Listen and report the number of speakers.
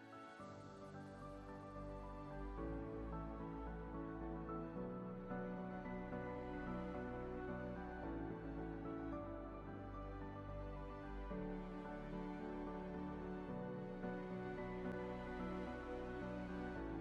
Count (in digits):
0